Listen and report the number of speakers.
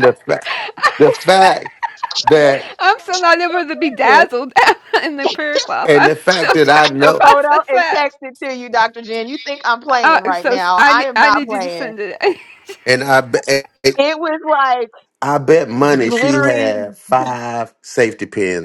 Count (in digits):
3